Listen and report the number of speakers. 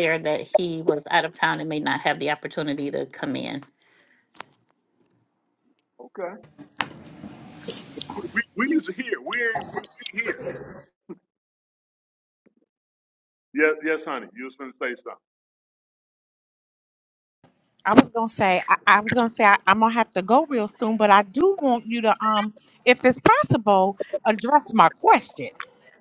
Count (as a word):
three